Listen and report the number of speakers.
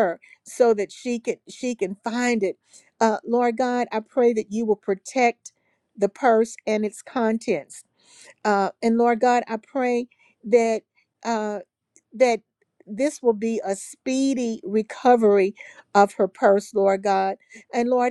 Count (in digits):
1